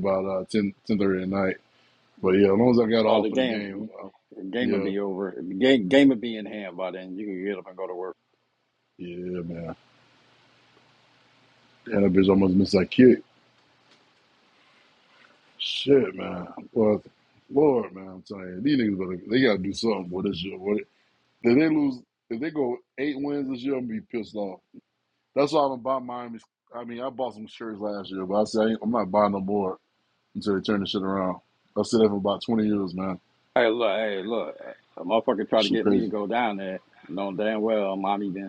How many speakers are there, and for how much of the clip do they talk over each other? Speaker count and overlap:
two, about 4%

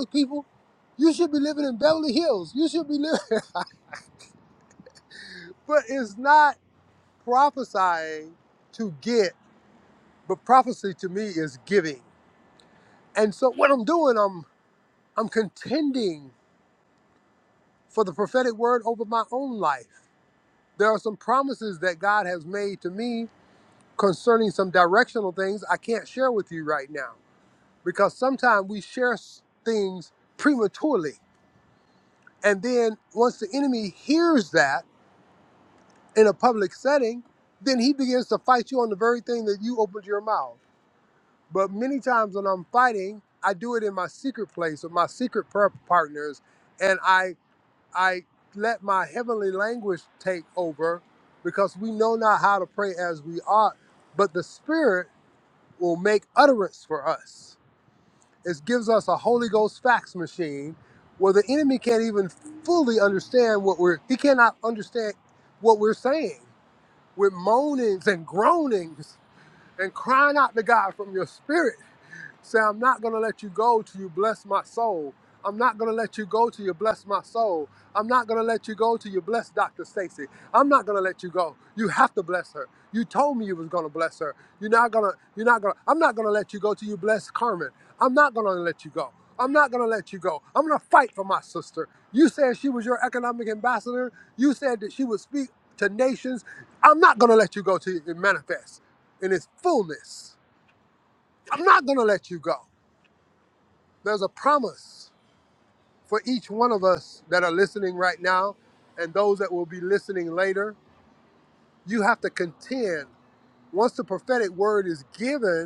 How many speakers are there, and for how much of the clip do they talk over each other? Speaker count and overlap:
one, no overlap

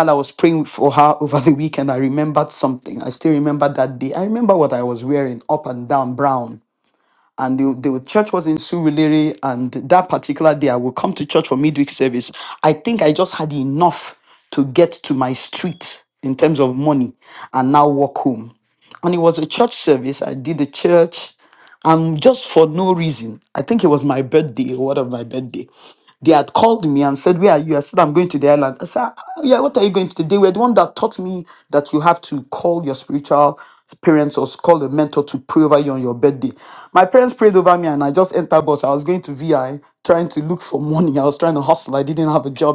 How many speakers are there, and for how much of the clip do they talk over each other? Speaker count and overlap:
one, no overlap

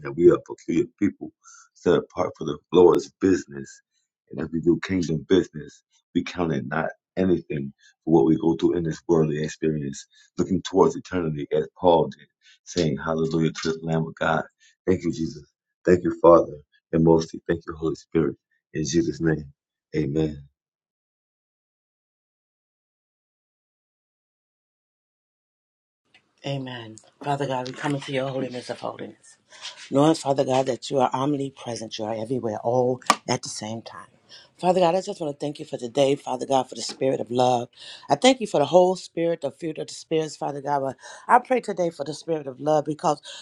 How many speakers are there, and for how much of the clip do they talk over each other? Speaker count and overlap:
two, no overlap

